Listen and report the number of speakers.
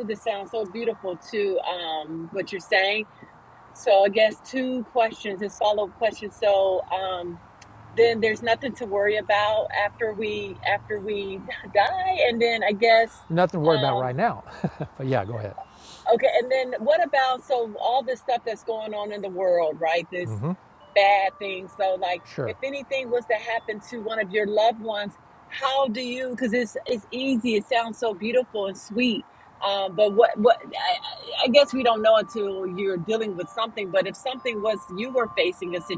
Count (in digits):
2